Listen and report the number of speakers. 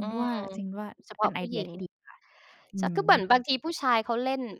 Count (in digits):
2